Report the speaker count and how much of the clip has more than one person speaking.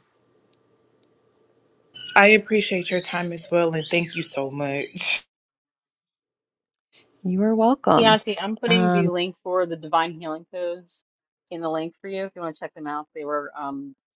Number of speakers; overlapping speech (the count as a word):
three, about 4%